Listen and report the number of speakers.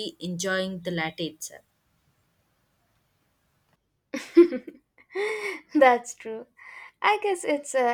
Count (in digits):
2